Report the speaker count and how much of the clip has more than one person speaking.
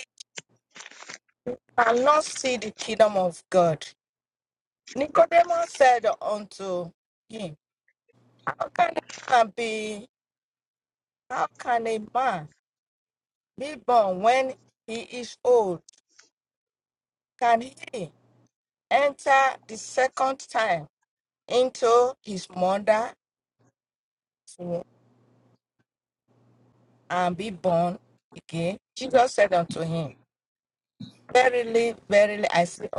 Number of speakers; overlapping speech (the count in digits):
1, no overlap